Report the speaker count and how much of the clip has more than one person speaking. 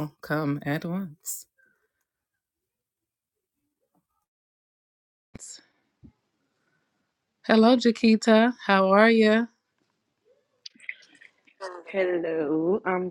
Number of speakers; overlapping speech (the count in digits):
2, no overlap